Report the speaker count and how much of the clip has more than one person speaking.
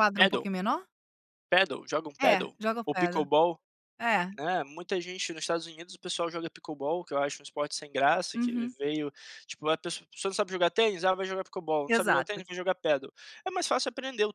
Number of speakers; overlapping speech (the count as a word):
two, about 13%